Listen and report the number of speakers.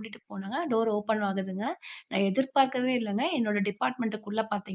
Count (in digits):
1